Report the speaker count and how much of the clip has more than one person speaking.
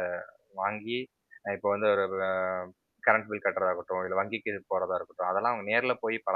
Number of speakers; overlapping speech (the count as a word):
one, no overlap